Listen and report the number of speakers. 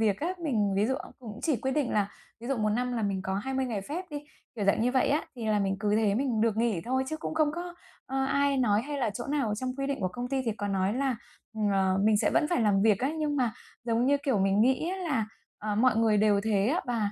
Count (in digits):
1